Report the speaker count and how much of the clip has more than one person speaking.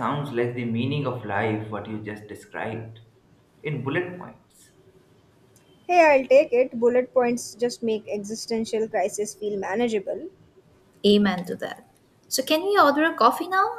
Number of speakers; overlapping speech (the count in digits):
3, no overlap